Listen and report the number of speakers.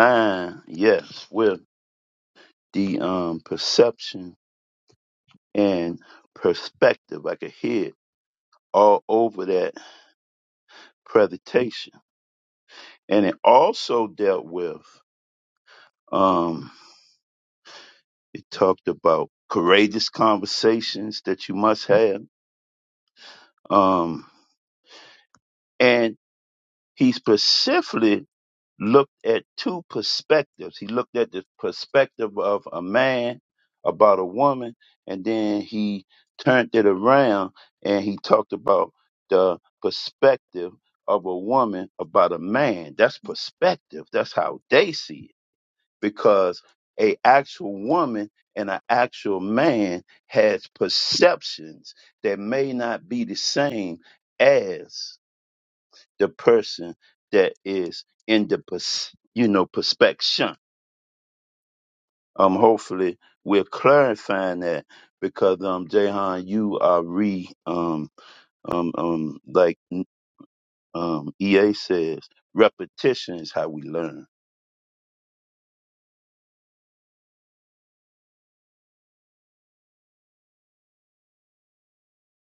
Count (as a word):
one